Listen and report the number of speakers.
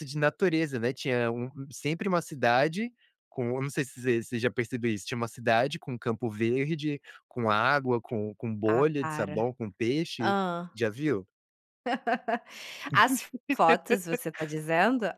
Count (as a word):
two